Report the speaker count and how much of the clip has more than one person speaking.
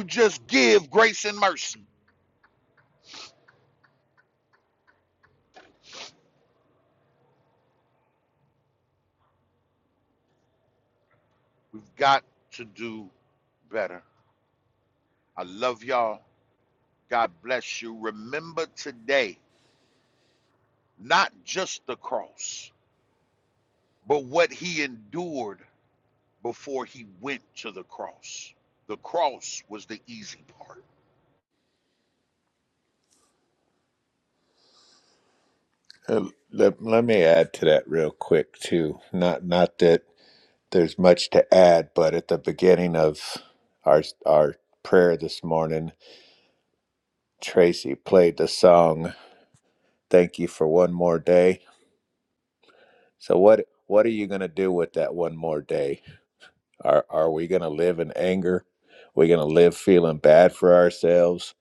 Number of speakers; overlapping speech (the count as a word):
two, no overlap